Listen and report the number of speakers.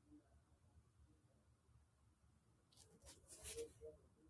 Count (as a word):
zero